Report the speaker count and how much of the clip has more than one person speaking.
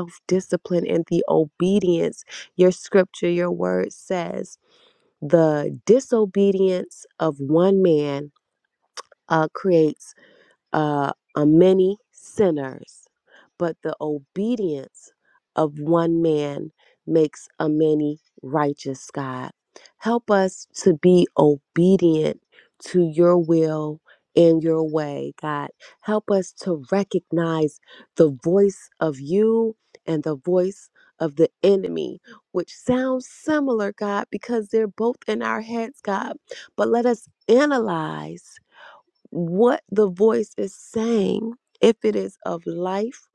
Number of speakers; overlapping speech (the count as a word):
one, no overlap